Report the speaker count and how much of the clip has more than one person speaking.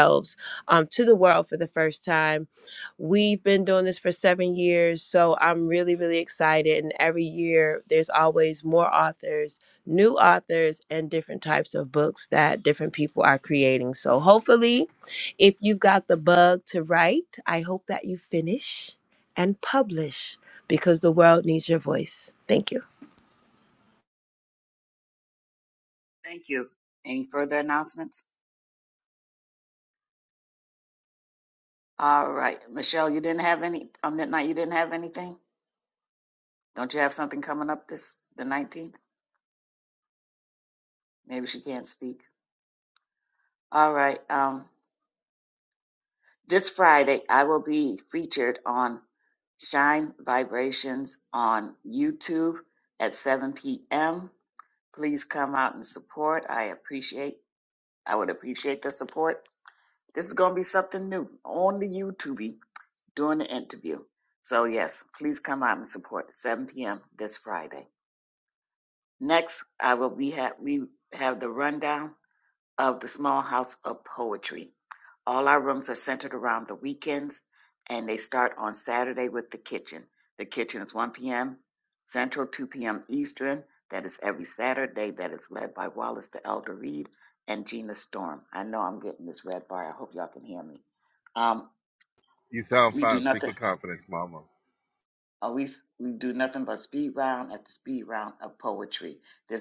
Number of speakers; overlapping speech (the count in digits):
3, about 1%